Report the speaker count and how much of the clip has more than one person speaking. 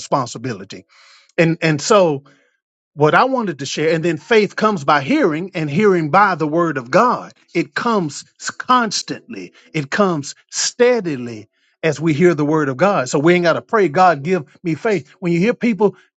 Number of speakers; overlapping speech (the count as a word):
one, no overlap